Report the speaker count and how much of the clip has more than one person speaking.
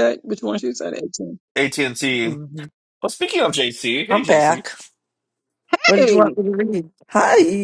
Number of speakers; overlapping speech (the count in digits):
3, about 14%